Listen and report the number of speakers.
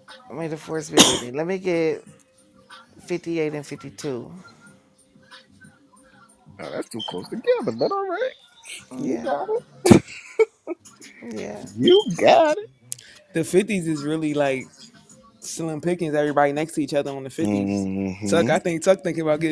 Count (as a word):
three